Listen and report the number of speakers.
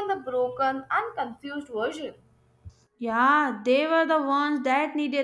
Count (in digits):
2